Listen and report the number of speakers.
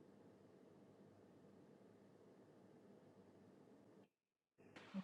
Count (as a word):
zero